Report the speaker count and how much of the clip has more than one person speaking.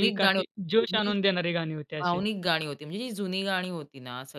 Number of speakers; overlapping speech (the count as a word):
two, about 23%